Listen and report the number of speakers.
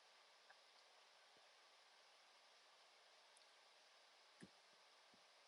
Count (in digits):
0